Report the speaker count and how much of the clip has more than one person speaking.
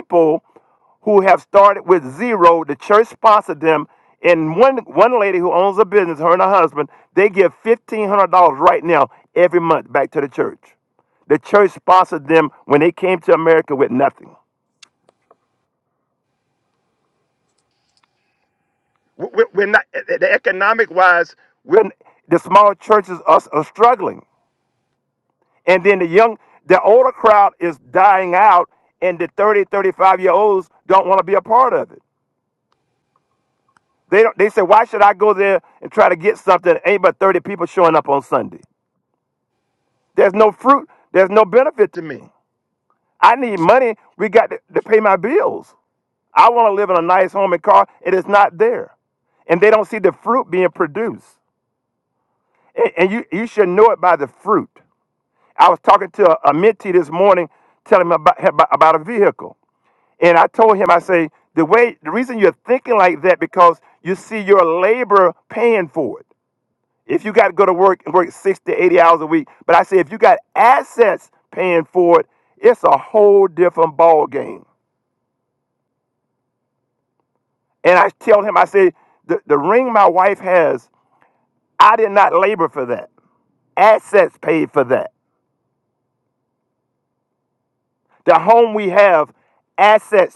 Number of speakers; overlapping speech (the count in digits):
1, no overlap